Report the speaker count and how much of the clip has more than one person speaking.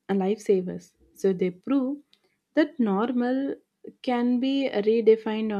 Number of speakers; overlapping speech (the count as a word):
one, no overlap